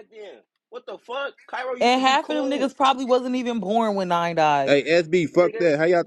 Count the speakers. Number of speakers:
3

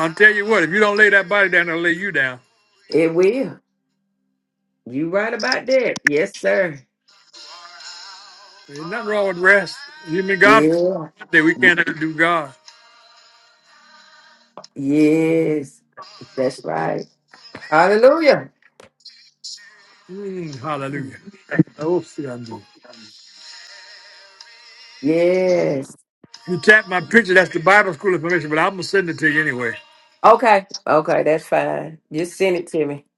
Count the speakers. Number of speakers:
2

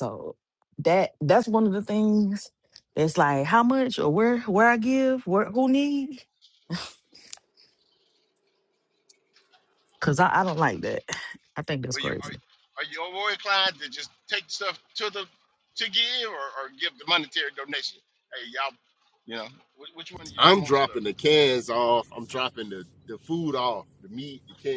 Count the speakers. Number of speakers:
3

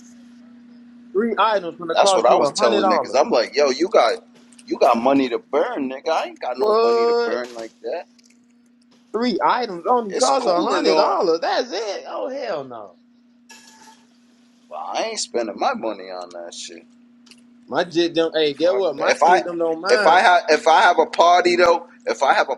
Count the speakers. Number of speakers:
2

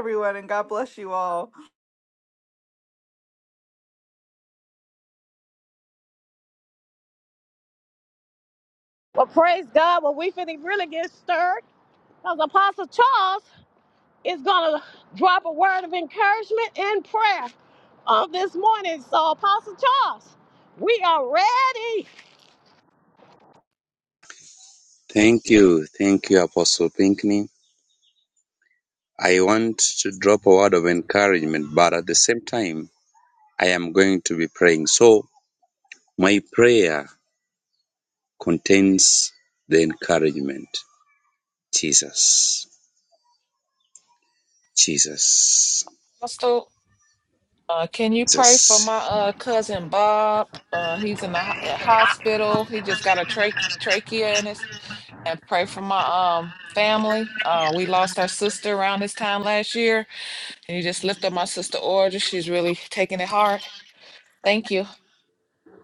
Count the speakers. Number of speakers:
4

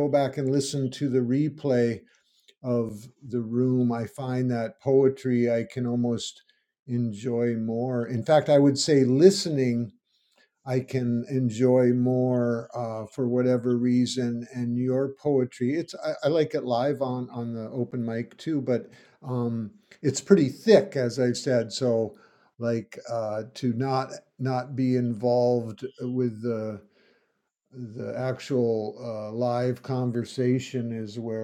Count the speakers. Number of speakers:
1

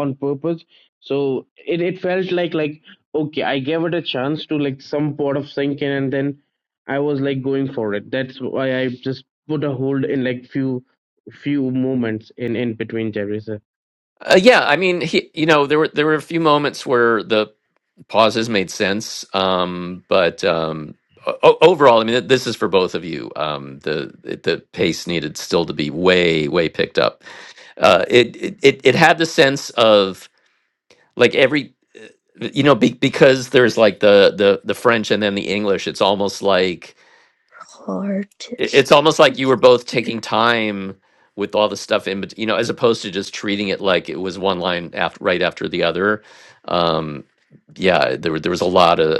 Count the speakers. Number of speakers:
3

